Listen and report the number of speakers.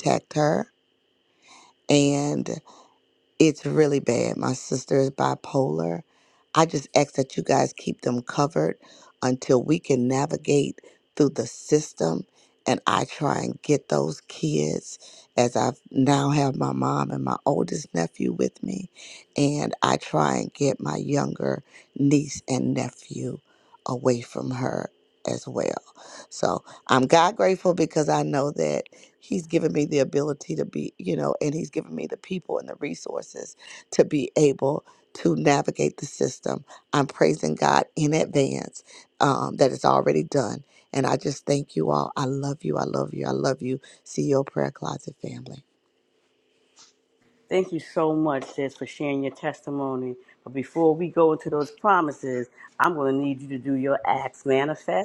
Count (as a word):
two